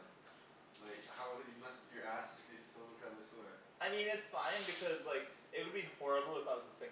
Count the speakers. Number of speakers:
two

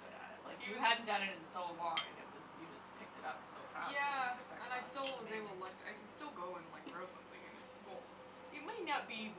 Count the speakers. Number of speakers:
two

